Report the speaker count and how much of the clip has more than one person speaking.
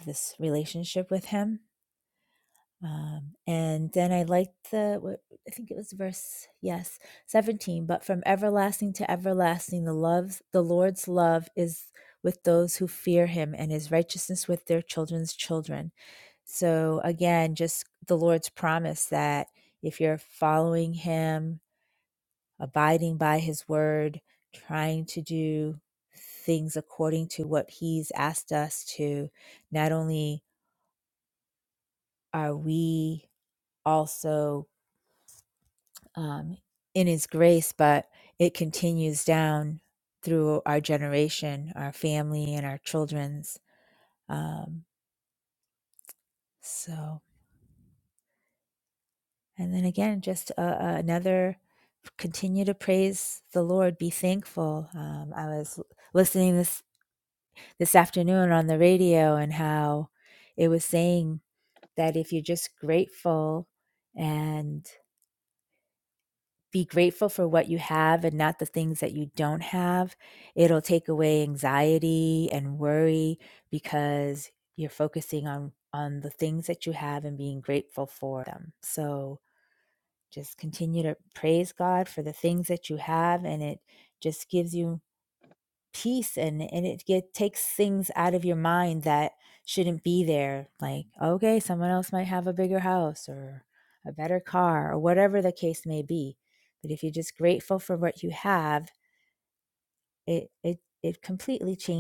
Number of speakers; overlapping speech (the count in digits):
1, no overlap